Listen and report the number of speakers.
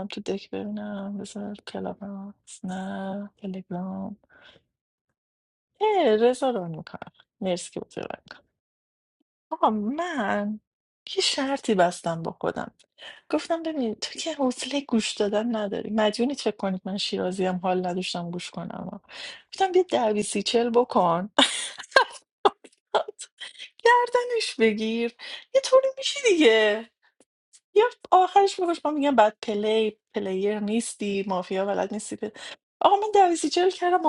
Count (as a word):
one